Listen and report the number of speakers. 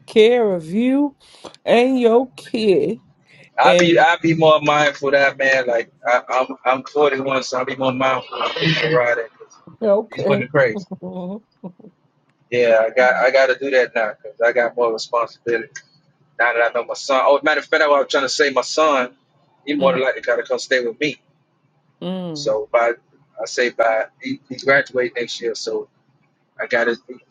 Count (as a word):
two